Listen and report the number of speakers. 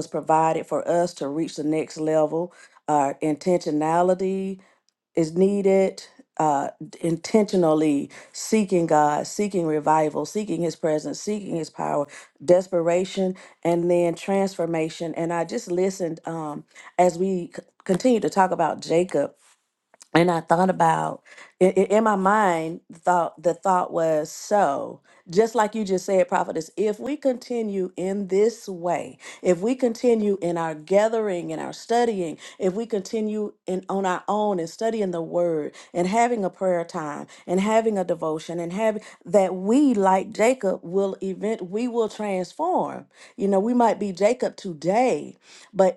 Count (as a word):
one